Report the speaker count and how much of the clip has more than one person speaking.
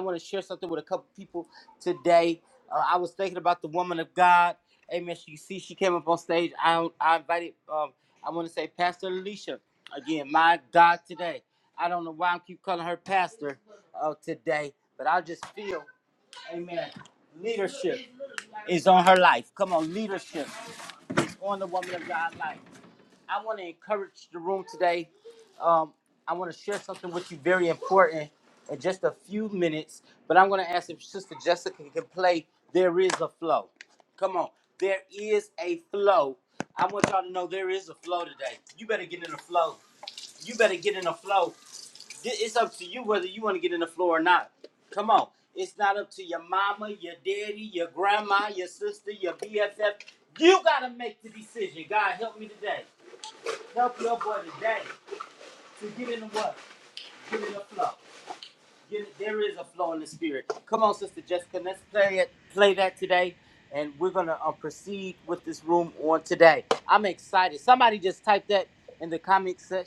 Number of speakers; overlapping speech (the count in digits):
1, no overlap